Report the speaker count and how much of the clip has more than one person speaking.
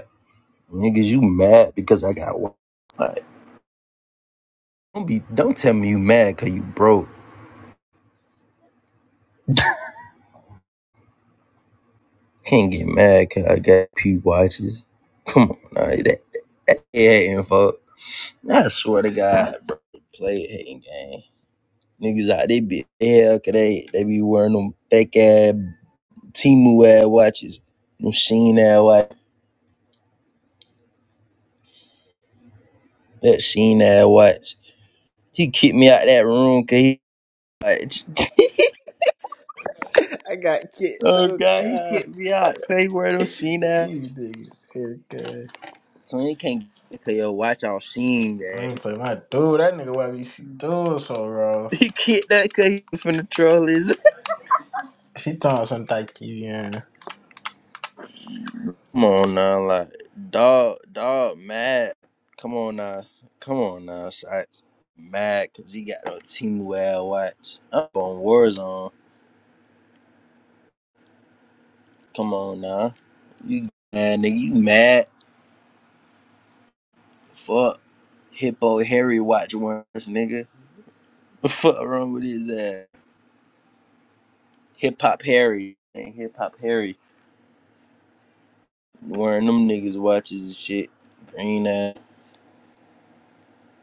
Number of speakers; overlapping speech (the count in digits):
2, about 2%